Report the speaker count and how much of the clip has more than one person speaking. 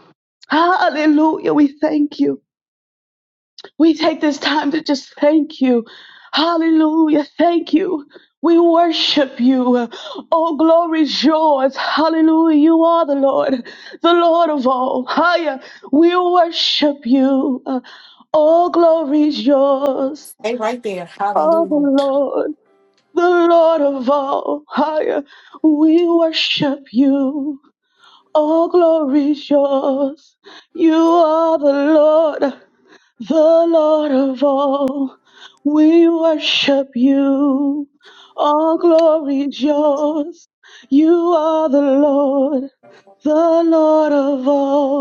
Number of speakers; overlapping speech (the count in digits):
2, about 1%